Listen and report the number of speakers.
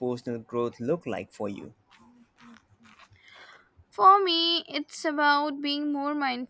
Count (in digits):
2